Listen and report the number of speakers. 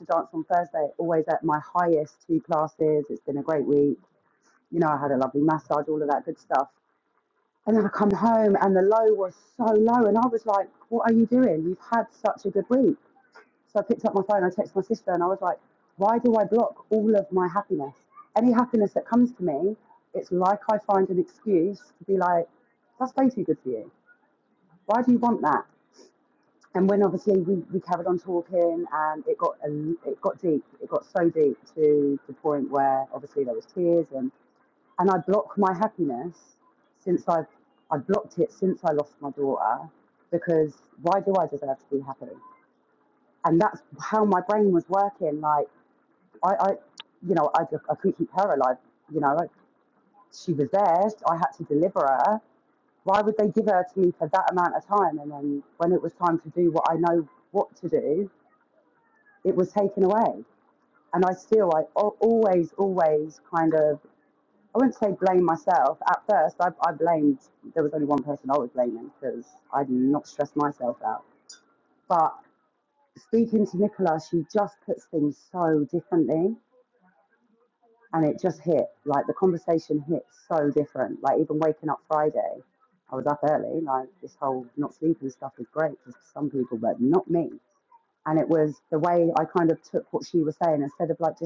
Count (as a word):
one